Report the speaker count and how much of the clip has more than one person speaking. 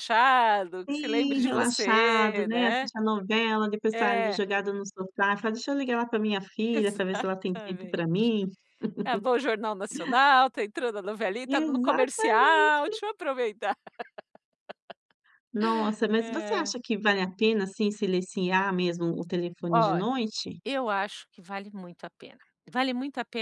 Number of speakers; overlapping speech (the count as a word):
two, about 23%